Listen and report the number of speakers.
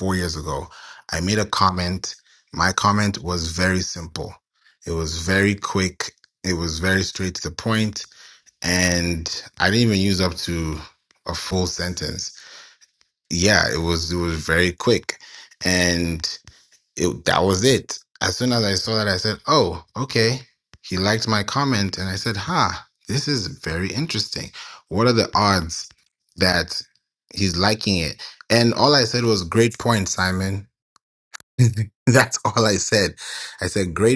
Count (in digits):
1